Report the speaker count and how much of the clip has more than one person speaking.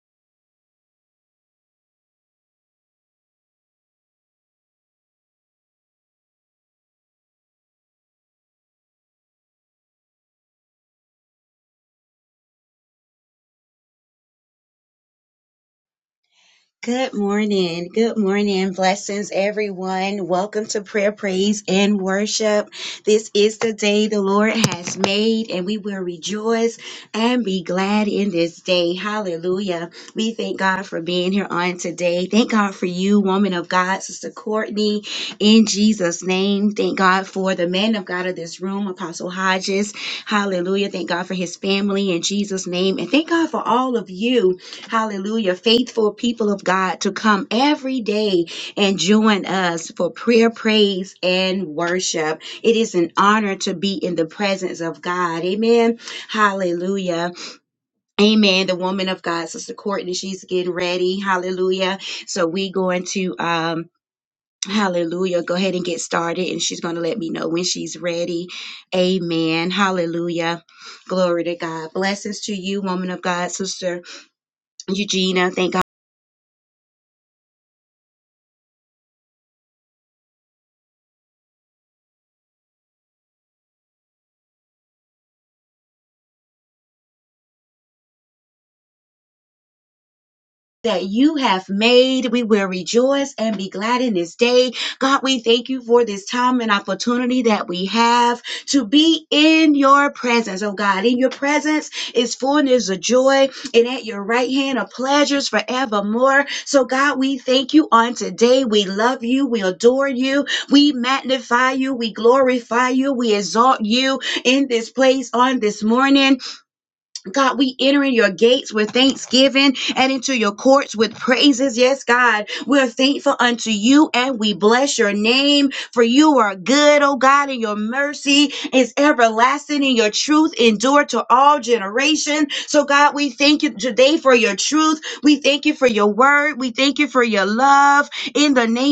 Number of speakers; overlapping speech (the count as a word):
one, no overlap